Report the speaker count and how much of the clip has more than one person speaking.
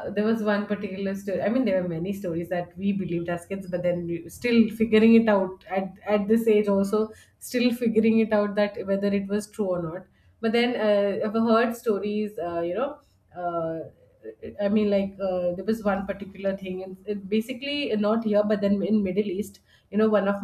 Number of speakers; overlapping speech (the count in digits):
1, no overlap